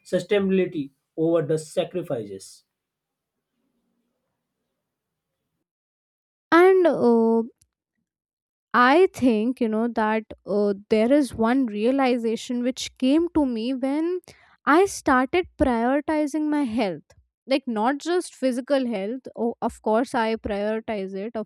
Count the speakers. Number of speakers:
two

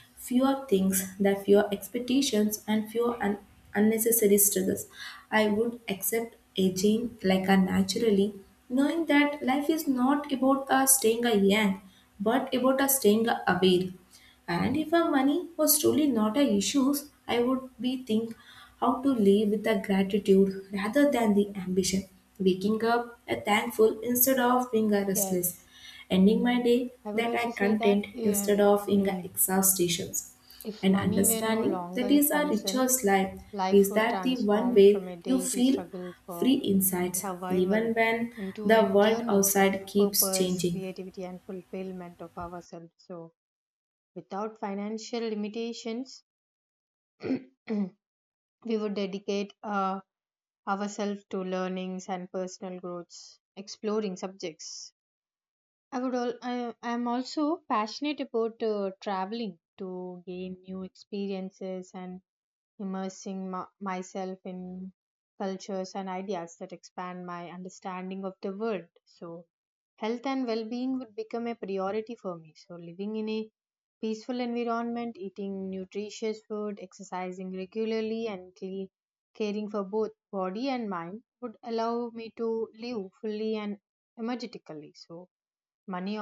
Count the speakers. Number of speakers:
two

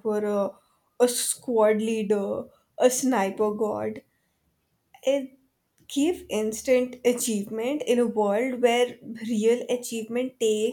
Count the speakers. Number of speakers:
one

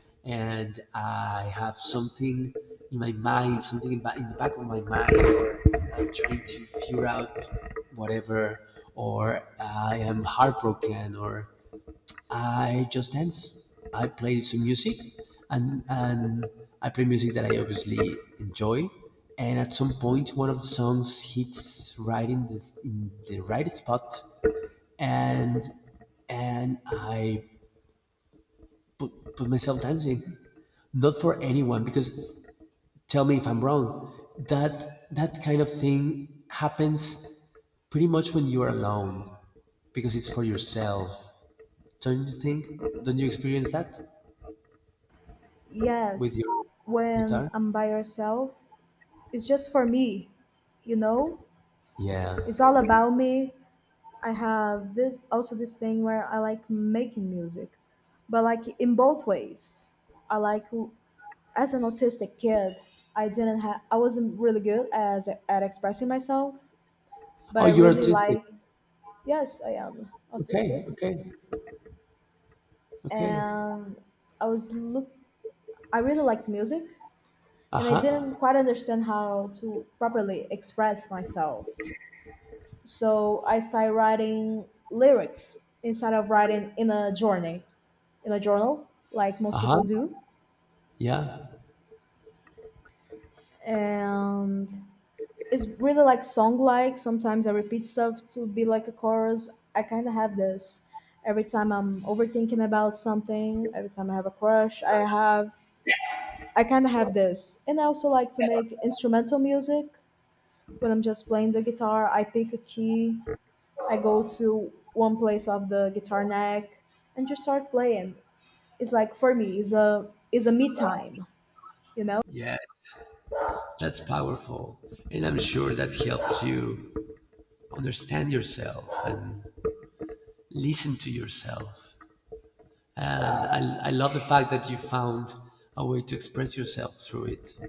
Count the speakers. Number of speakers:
two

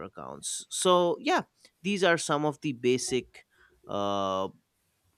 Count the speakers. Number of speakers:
one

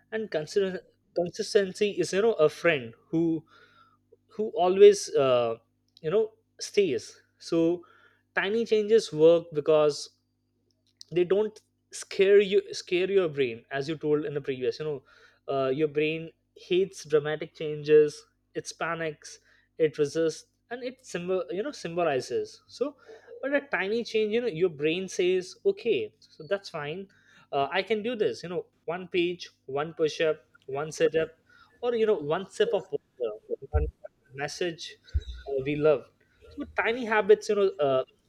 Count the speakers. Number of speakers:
one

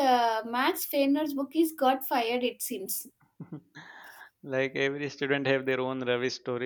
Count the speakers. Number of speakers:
two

